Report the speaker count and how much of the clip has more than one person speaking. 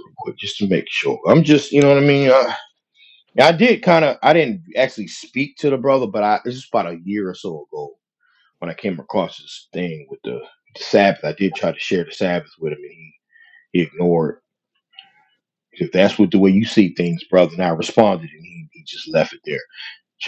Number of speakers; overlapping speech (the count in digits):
1, no overlap